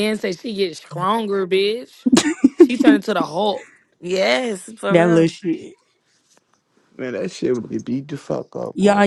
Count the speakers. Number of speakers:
4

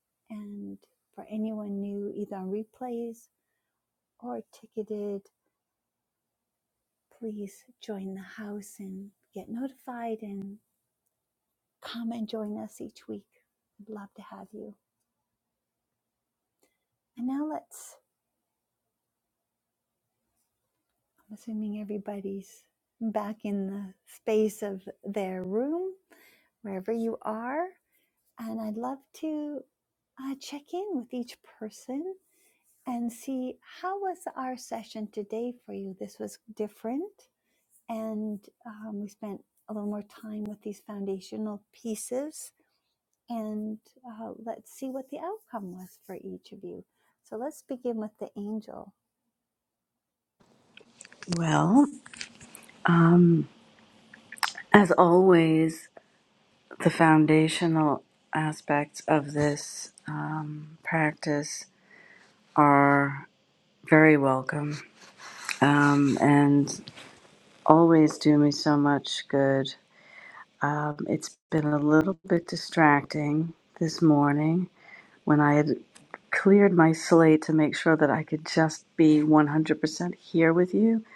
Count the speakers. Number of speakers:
2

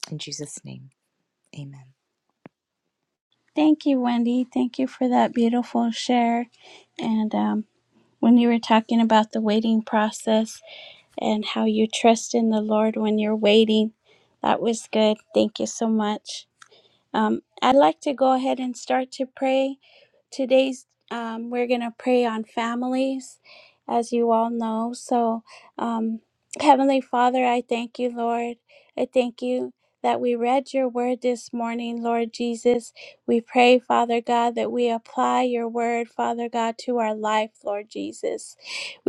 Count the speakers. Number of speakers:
2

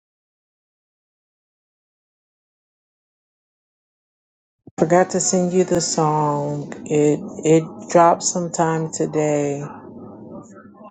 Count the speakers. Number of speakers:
1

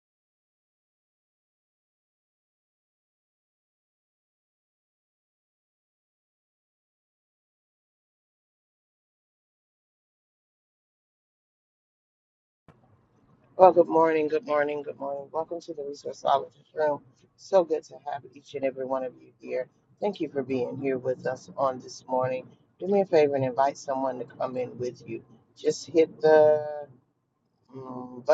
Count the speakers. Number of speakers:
1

